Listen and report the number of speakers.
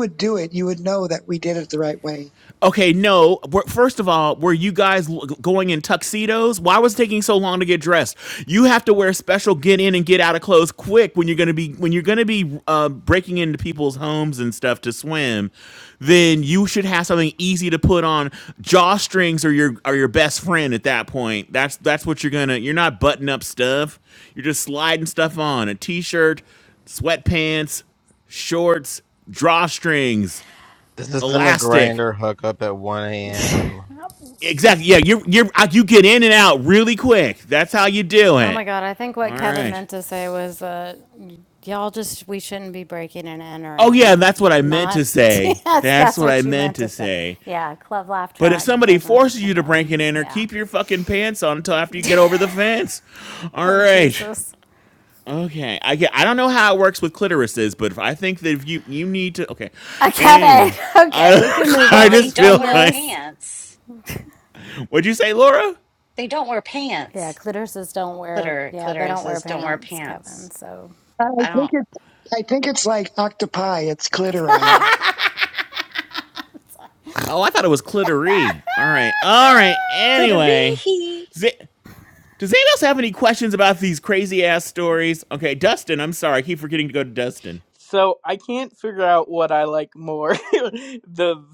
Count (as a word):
six